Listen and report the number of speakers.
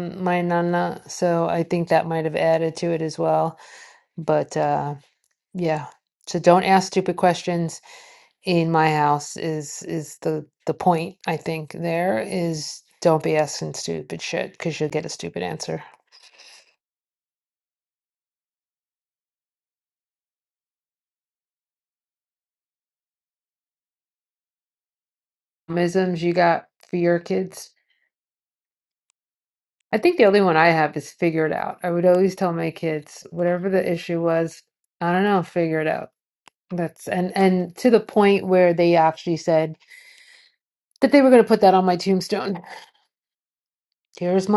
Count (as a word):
one